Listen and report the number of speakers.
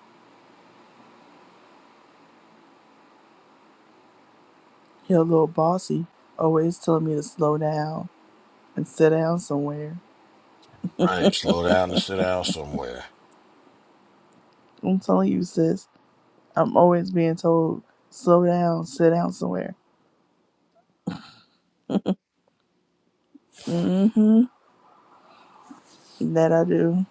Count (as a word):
two